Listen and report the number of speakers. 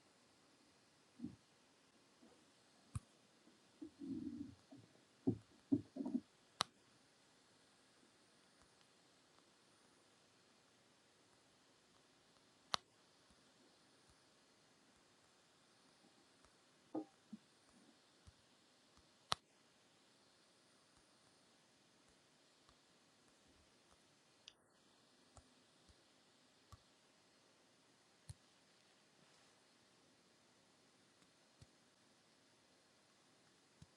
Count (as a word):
zero